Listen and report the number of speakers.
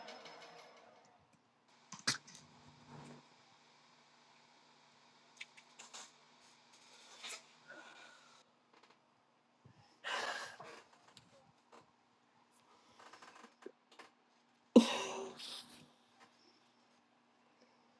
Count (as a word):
zero